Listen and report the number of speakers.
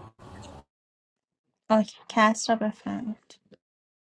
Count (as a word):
one